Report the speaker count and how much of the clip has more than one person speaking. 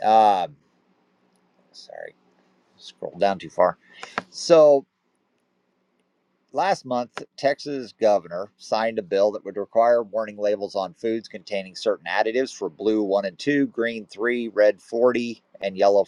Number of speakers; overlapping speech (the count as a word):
one, no overlap